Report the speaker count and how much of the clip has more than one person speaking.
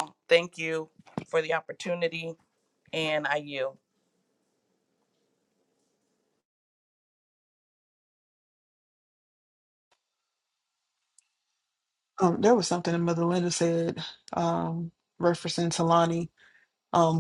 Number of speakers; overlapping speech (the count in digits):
2, no overlap